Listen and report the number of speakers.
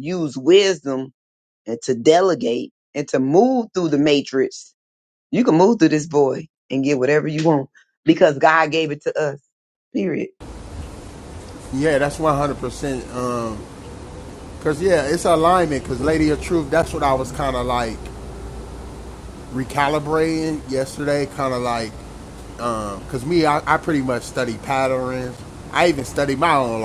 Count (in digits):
2